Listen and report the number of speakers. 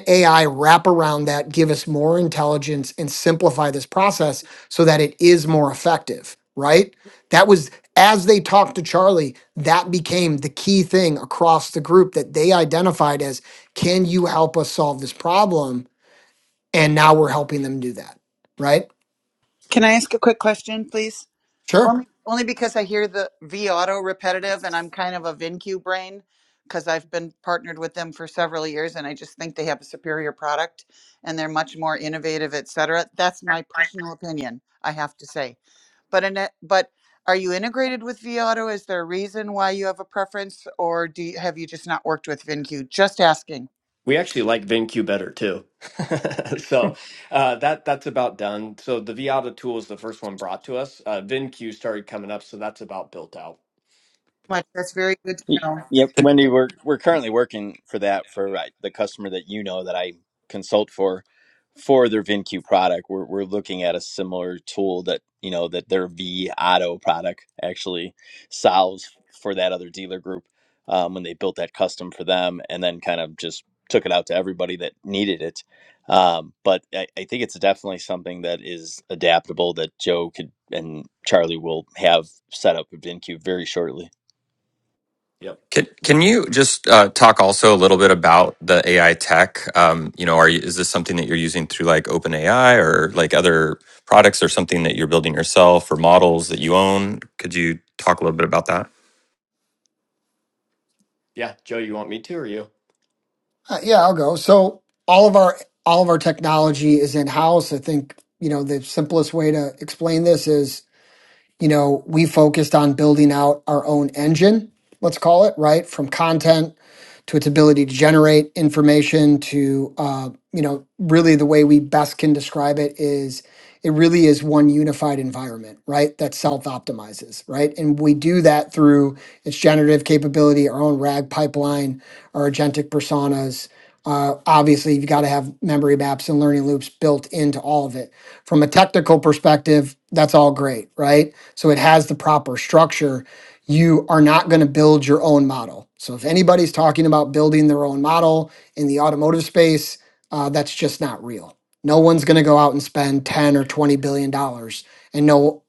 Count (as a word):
five